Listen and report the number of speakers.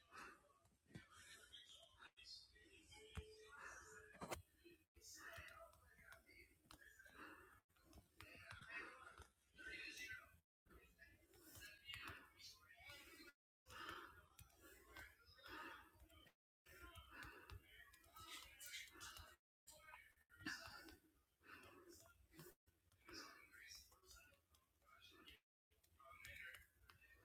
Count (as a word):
zero